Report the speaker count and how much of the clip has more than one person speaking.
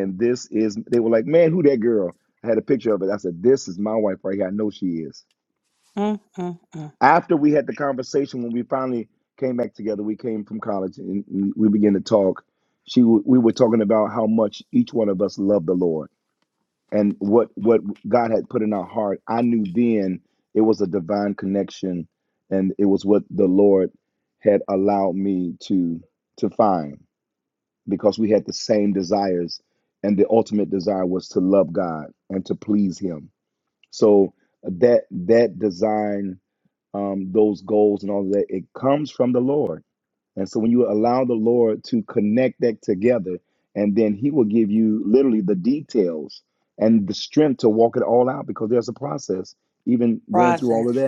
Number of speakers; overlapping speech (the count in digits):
2, about 1%